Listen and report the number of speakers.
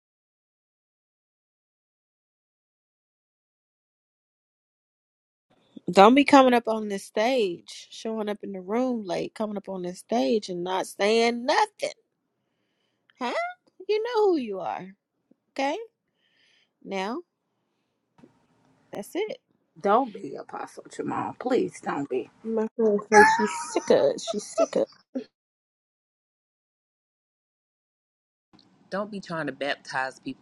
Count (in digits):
4